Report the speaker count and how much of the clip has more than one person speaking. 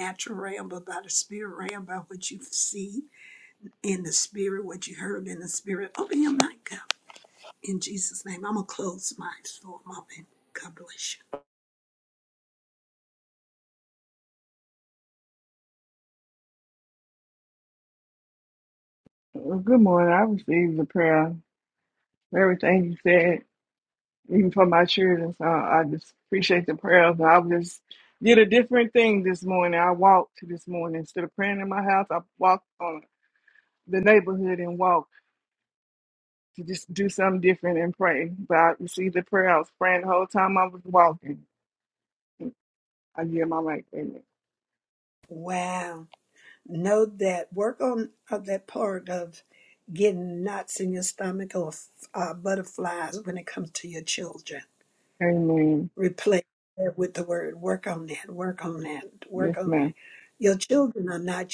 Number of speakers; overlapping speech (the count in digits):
2, about 1%